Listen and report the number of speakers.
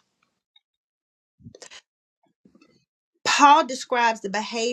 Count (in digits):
1